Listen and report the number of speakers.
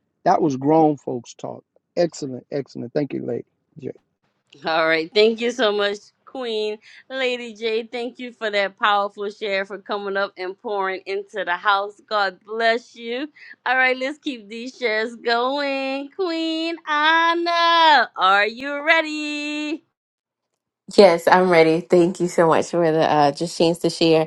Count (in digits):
3